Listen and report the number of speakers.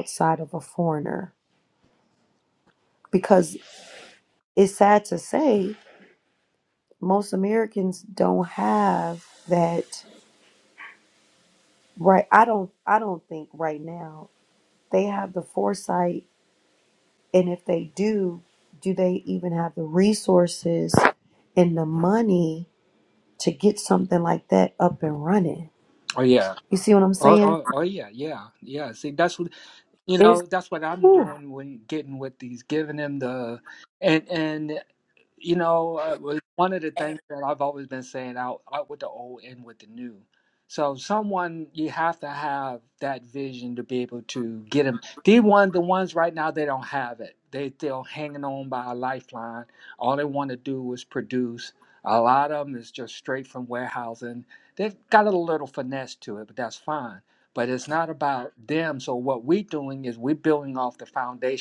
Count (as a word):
two